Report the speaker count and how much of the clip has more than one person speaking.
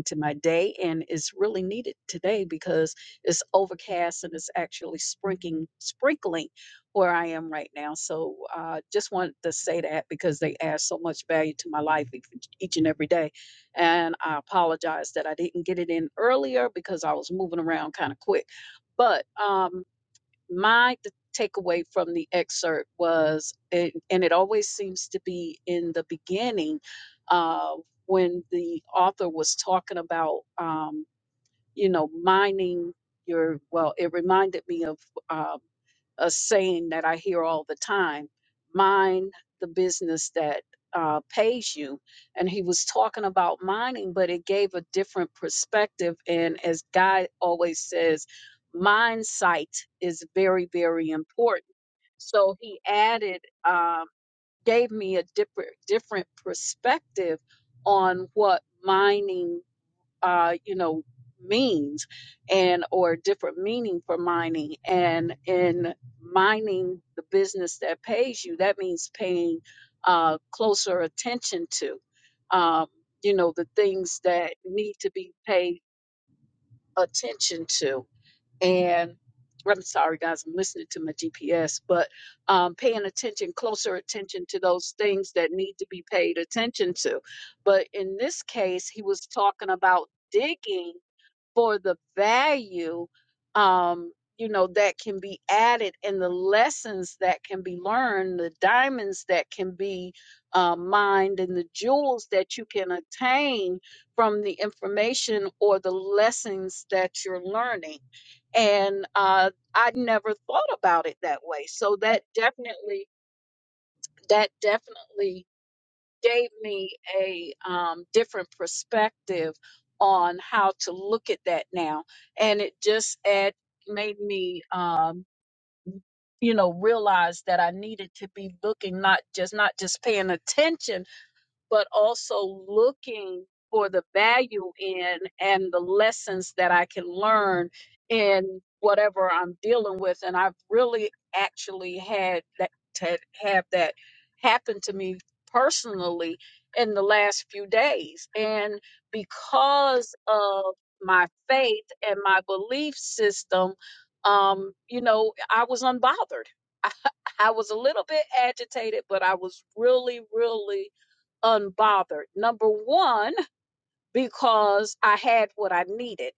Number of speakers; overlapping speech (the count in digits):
1, no overlap